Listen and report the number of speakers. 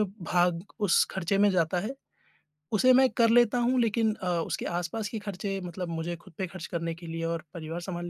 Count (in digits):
1